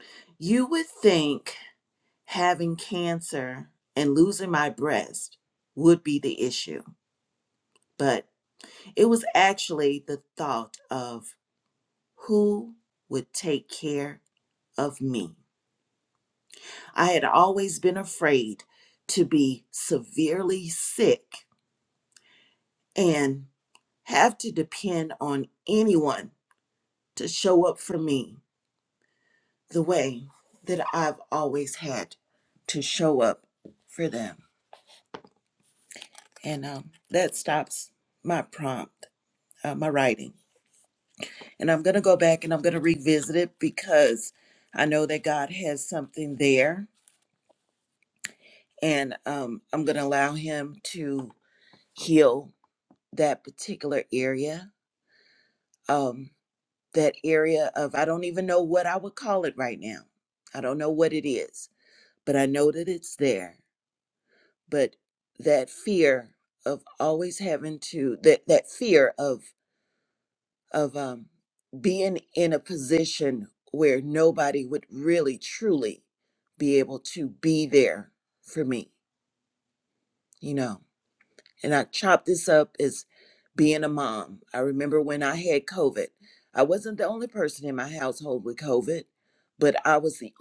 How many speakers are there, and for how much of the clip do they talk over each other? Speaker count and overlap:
one, no overlap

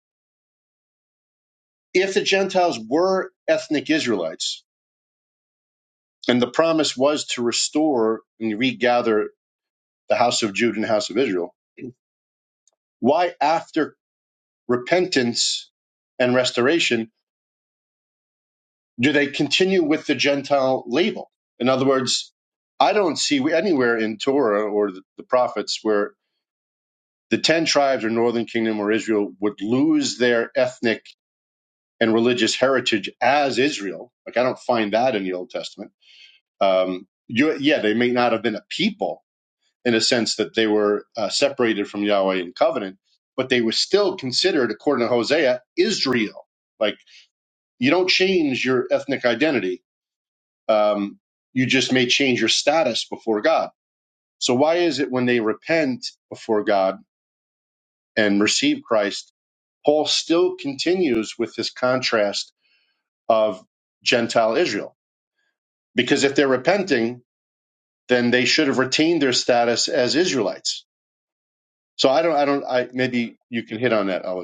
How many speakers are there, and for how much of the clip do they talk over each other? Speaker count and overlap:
one, no overlap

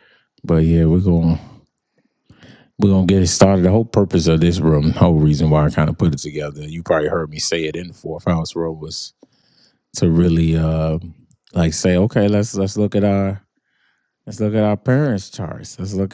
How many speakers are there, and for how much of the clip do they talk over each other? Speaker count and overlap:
one, no overlap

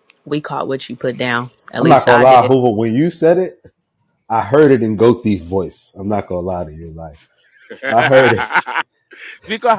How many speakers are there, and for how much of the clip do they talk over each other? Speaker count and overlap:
three, about 13%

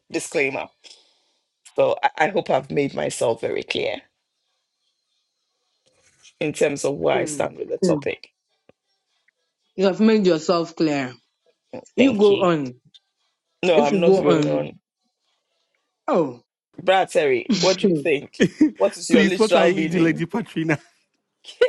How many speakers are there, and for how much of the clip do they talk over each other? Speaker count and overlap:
three, about 15%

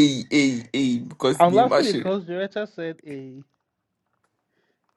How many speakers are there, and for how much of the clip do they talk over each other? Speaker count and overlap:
two, about 15%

